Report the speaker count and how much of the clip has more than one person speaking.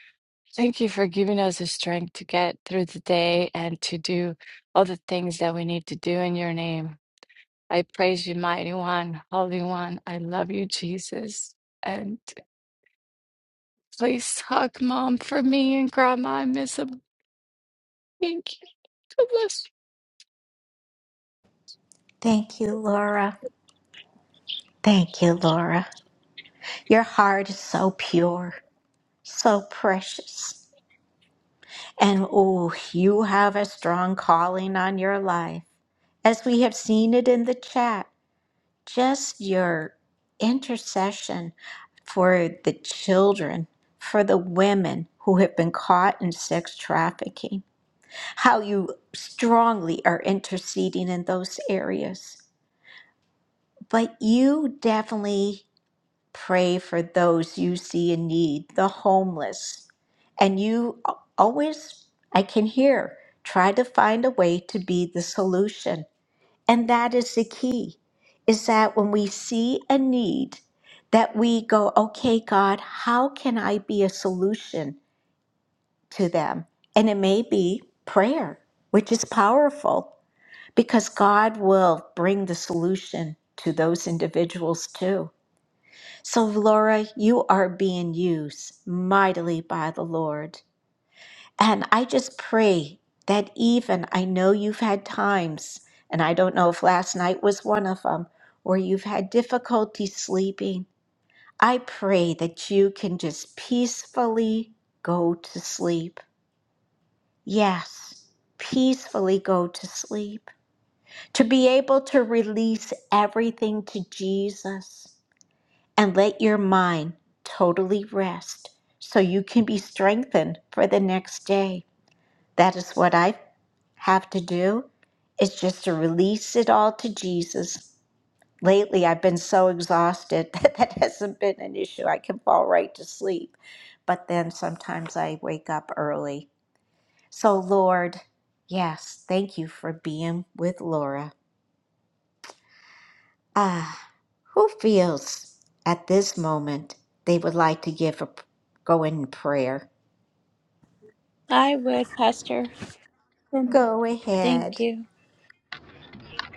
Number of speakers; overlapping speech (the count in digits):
3, under 1%